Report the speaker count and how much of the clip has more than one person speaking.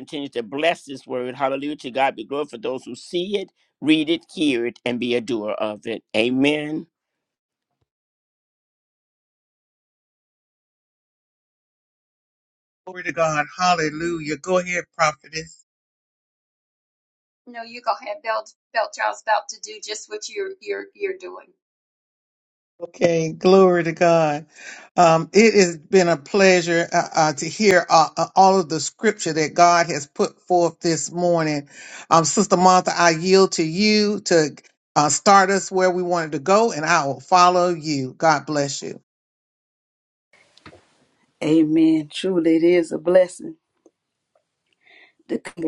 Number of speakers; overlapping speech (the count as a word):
four, no overlap